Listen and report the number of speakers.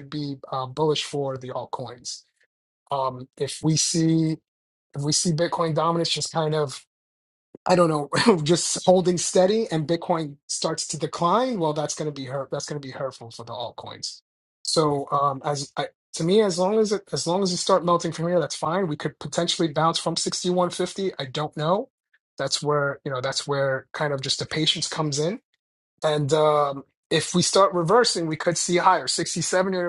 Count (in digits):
1